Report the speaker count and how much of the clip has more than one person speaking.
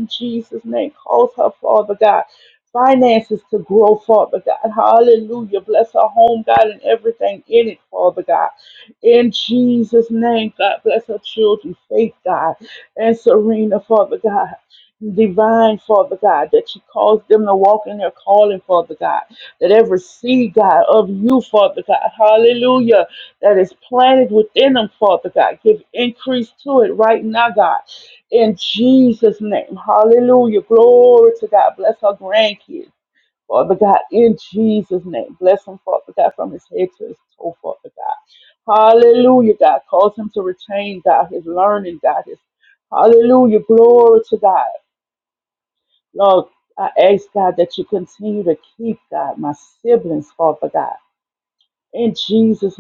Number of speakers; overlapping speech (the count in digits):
1, no overlap